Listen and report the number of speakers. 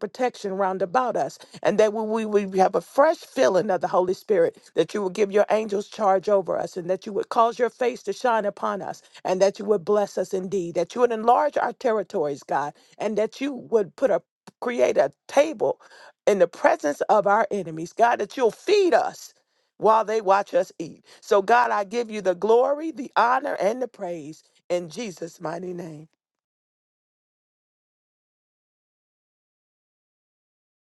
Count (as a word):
one